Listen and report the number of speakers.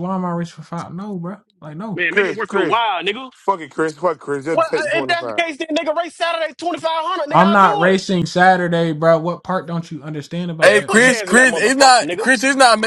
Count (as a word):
four